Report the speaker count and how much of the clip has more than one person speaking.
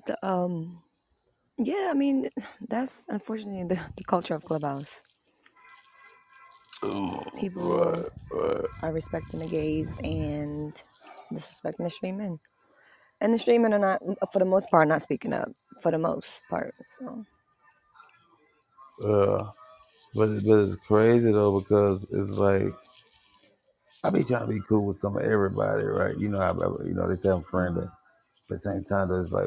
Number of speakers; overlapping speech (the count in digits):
2, about 3%